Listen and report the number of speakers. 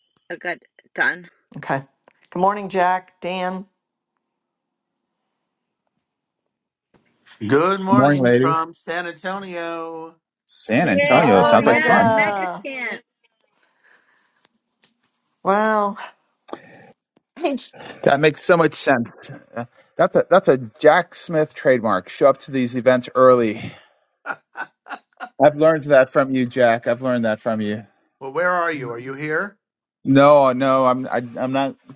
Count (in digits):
4